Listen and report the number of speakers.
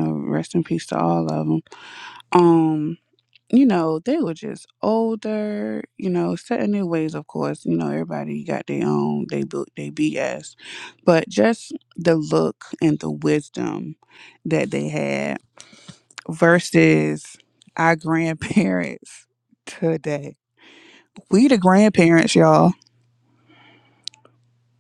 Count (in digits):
1